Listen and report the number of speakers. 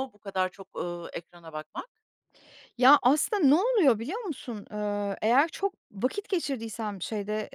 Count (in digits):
2